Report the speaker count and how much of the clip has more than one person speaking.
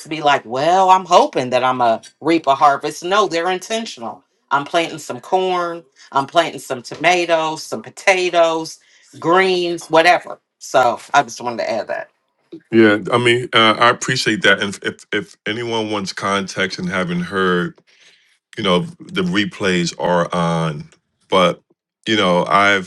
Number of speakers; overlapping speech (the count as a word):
two, no overlap